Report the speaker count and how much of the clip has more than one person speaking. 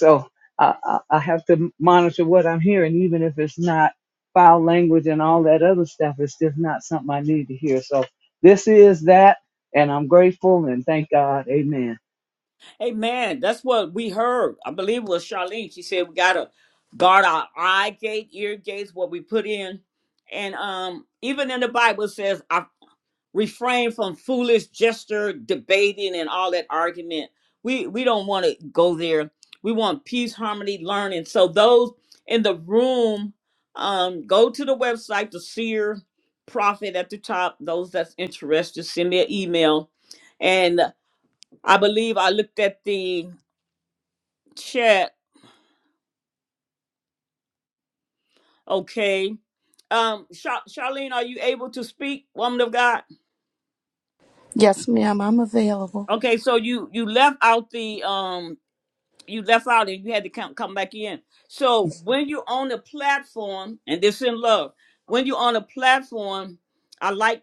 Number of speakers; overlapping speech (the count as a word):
three, no overlap